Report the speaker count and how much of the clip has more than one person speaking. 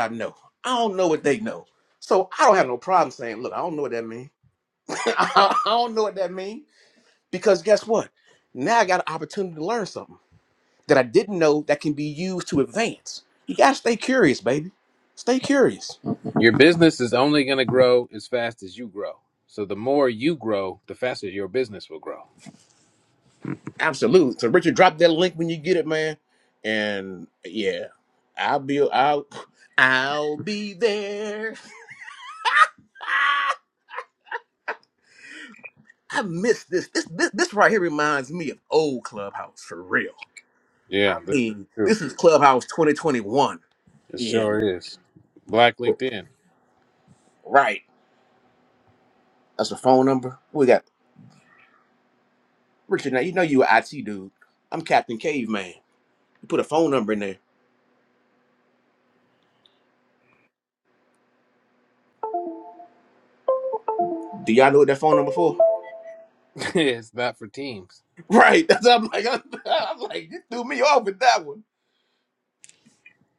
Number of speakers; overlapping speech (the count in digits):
2, about 1%